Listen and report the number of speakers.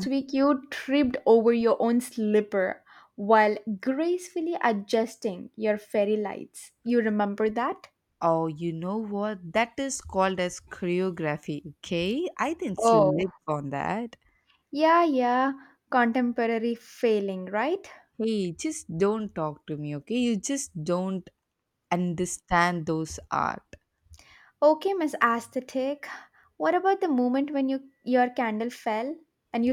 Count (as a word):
two